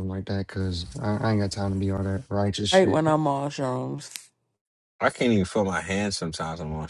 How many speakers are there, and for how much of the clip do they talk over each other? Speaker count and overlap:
3, about 6%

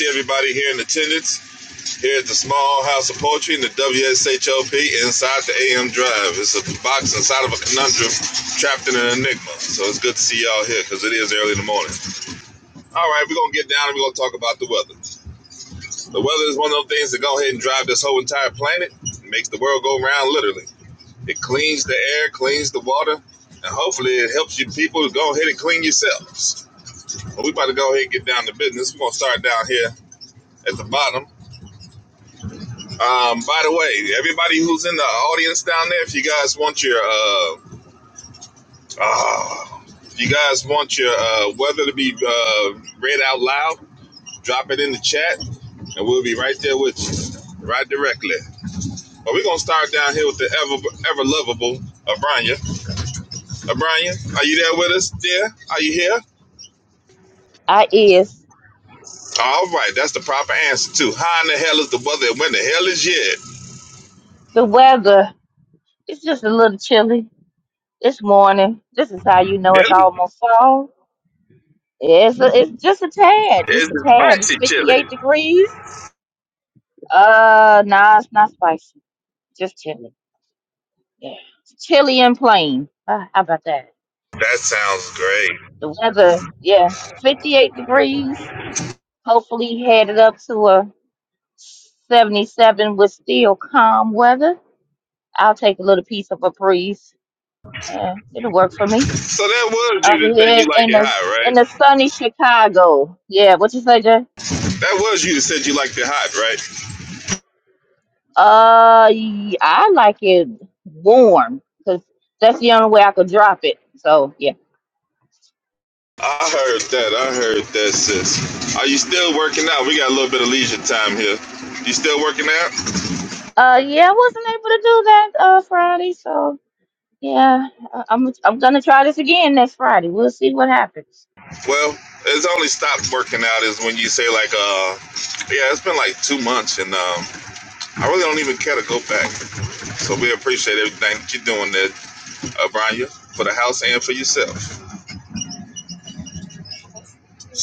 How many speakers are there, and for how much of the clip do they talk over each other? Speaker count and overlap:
2, about 2%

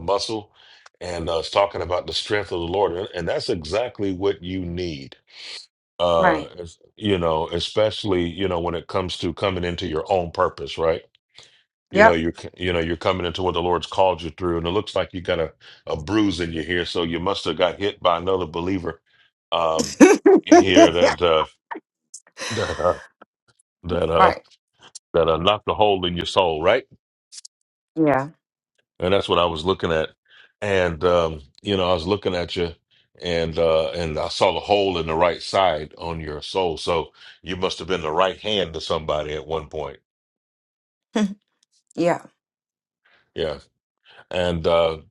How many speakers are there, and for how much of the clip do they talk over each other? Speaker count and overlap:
2, about 2%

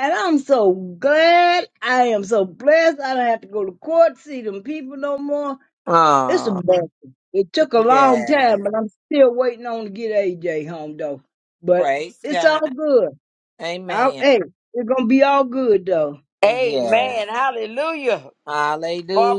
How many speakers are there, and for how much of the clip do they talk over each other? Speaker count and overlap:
3, about 15%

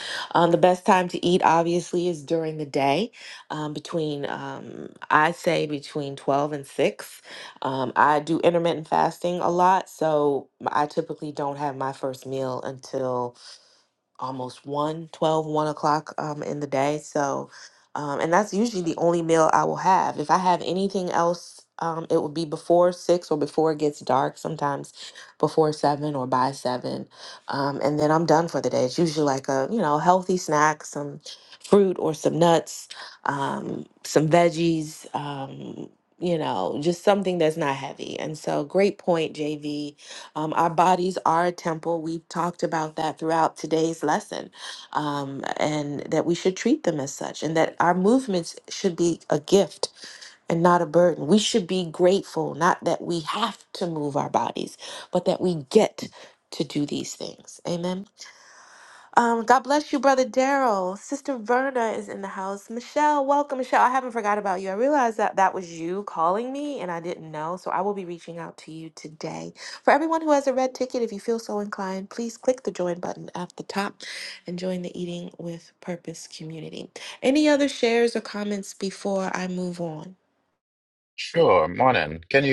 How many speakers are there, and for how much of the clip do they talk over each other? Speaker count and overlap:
2, no overlap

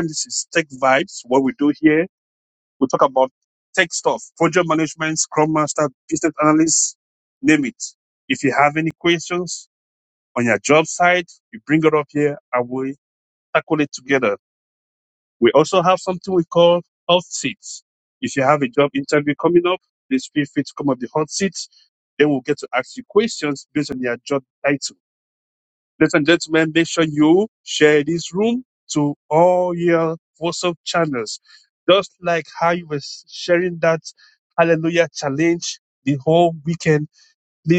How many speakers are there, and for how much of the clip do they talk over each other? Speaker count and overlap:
1, no overlap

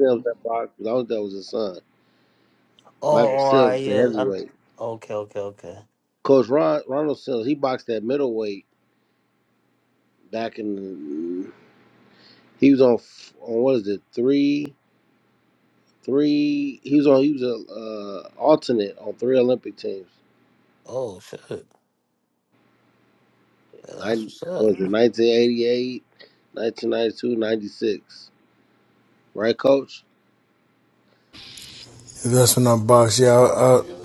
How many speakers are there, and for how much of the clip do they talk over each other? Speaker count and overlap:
3, about 6%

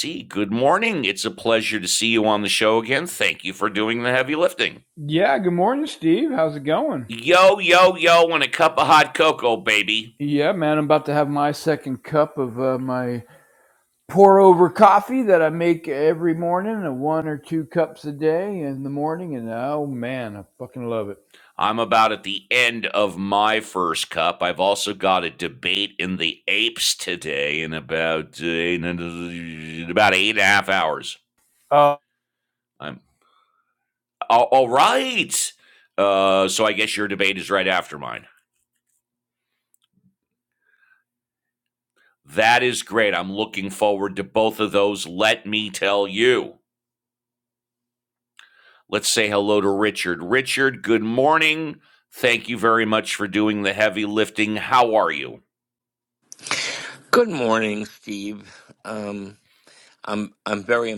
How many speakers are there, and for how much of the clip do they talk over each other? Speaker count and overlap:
3, no overlap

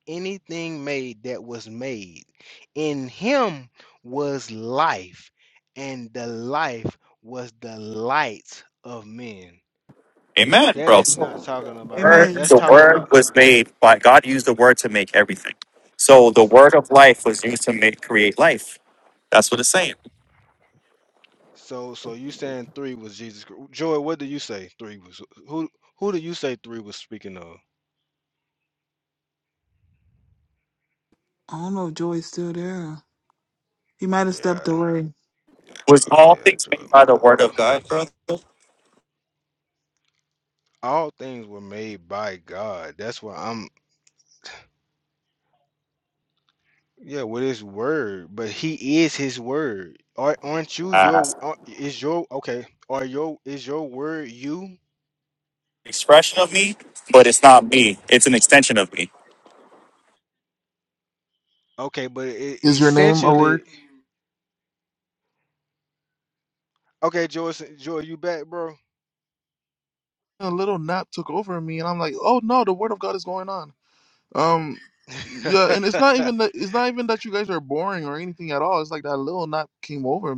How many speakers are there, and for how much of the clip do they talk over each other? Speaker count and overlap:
4, about 6%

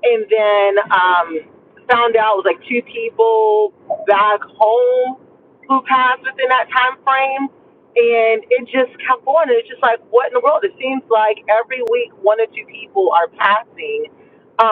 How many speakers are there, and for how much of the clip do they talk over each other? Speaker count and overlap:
1, no overlap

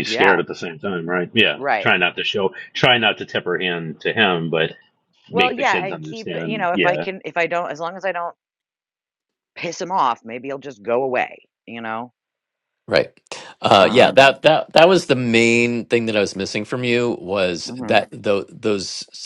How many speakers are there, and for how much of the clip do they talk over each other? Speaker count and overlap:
3, about 16%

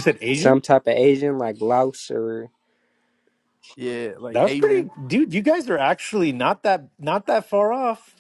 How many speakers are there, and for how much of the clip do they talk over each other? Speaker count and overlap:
3, about 9%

